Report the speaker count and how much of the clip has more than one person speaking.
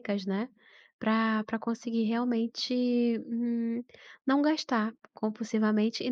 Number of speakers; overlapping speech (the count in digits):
1, no overlap